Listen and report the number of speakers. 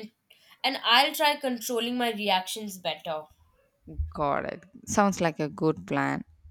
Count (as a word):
two